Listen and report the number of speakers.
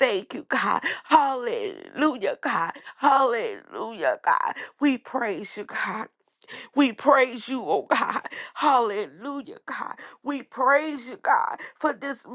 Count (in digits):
1